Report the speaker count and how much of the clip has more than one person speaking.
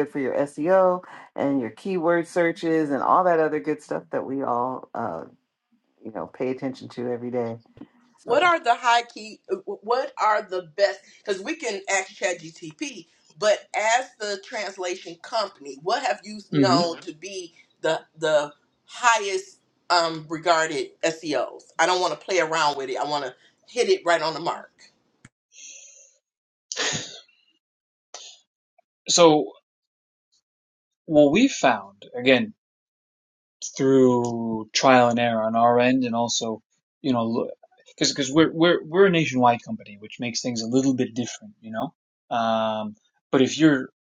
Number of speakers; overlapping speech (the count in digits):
3, about 1%